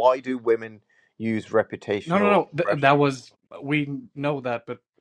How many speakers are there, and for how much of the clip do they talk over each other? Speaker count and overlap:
2, about 16%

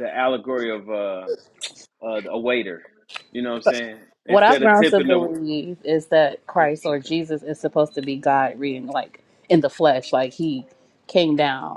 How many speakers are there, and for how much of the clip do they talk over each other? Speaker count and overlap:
2, about 13%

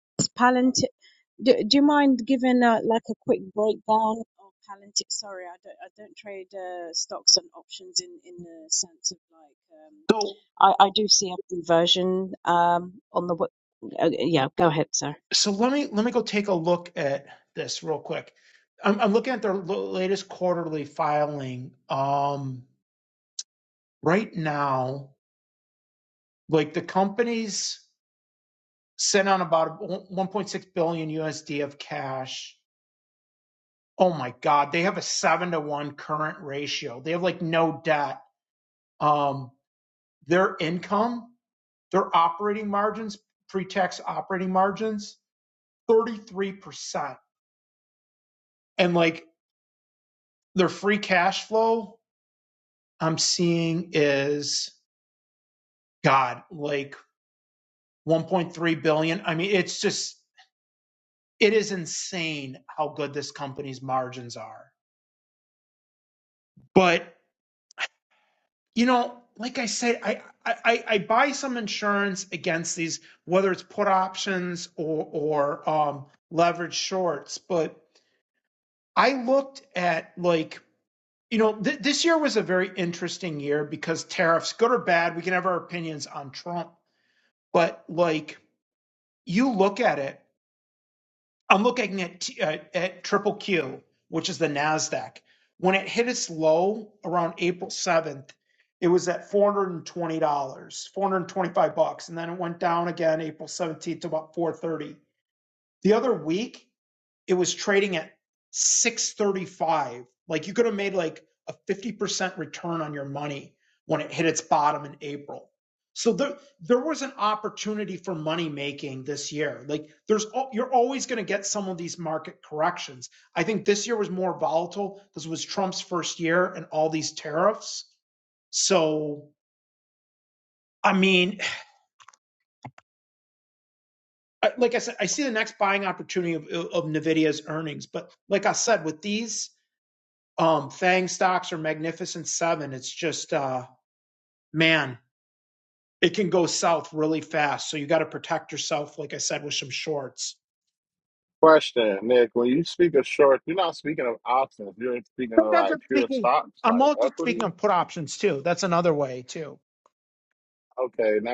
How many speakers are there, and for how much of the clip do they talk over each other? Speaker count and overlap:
3, about 1%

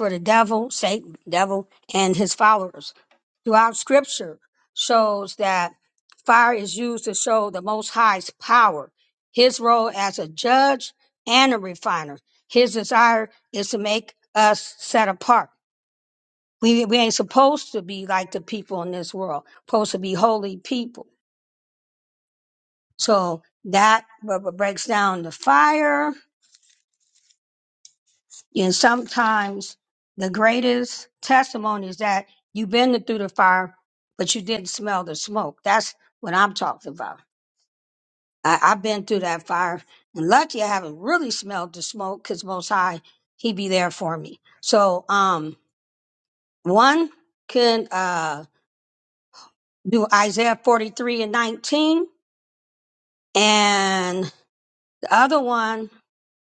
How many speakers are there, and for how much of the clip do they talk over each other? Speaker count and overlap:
1, no overlap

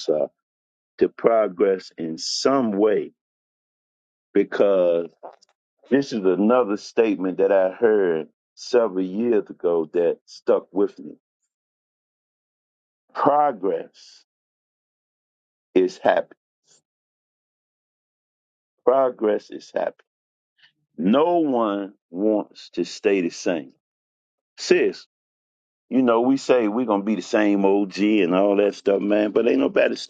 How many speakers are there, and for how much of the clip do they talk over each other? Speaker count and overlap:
1, no overlap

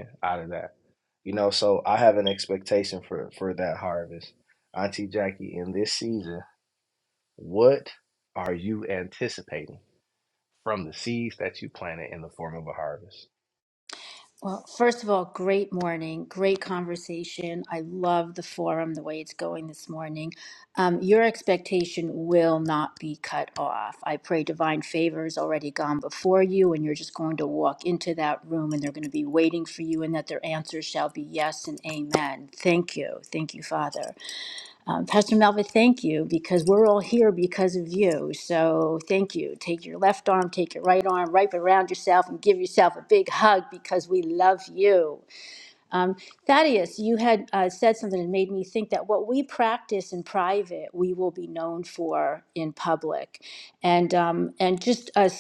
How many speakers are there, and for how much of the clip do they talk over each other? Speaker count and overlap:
2, no overlap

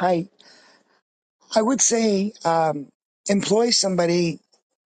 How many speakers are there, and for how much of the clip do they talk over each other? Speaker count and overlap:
1, no overlap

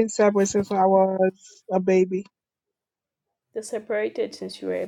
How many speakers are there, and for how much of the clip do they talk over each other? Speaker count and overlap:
2, no overlap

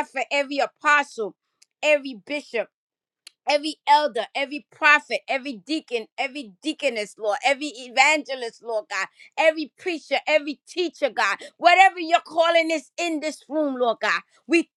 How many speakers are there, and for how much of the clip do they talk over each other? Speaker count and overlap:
1, no overlap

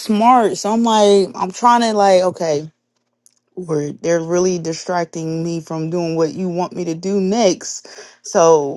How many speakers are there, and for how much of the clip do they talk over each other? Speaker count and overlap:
1, no overlap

